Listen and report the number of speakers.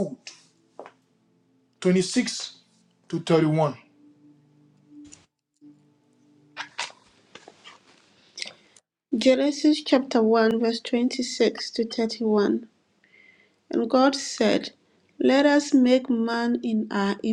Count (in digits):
2